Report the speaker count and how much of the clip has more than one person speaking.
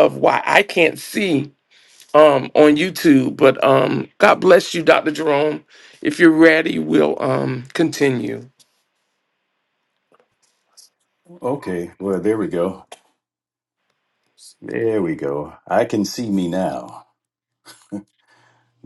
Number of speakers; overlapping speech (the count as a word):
two, no overlap